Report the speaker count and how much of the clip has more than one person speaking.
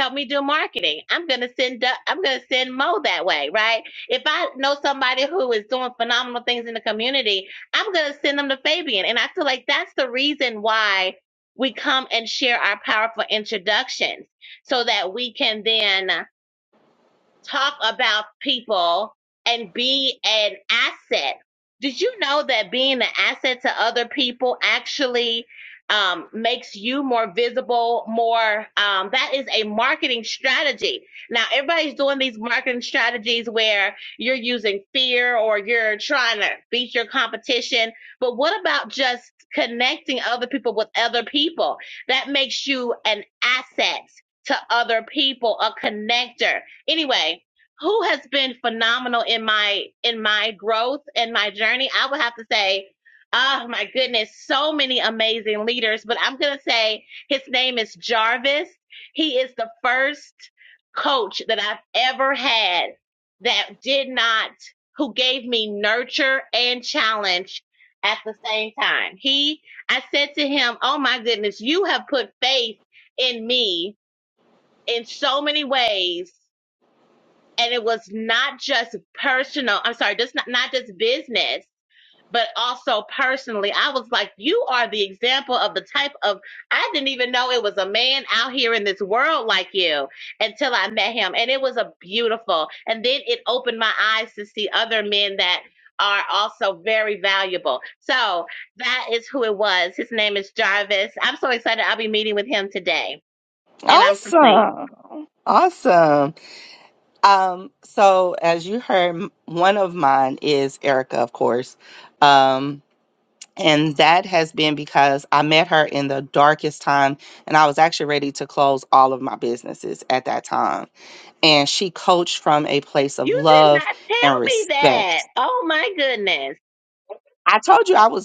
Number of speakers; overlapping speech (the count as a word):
two, about 1%